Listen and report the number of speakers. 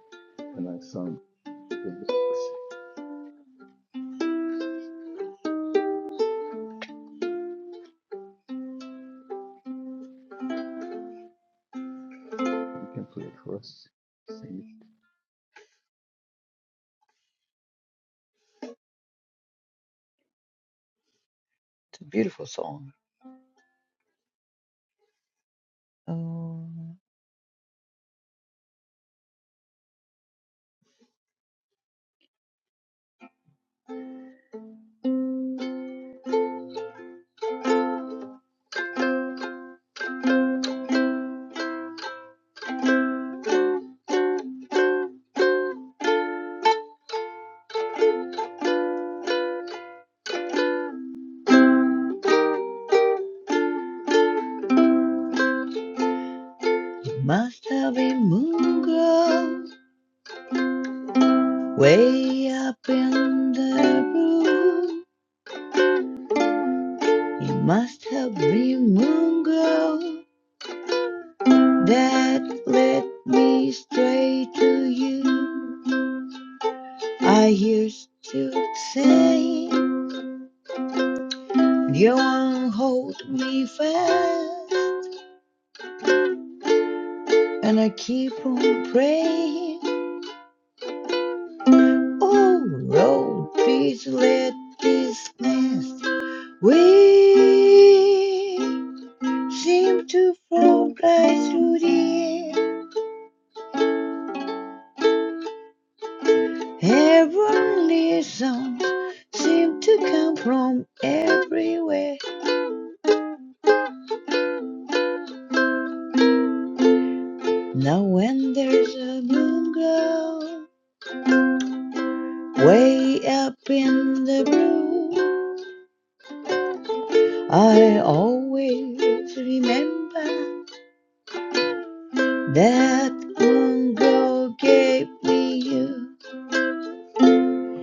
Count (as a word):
two